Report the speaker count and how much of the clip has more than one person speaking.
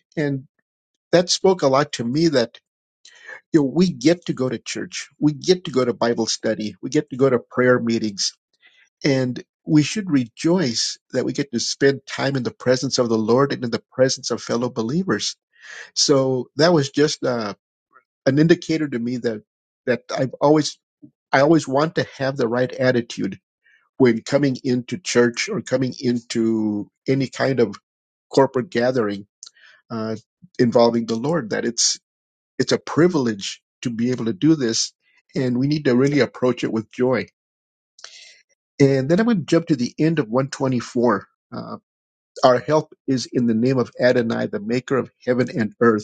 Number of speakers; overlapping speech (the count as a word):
one, no overlap